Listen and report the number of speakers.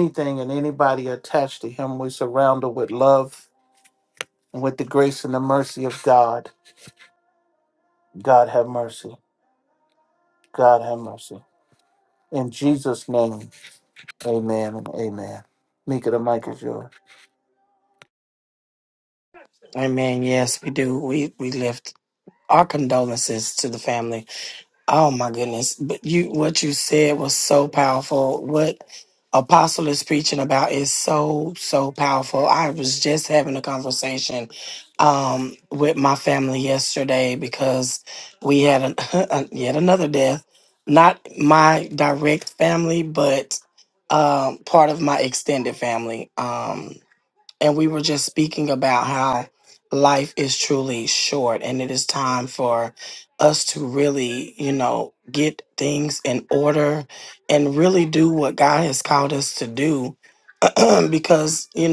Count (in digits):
2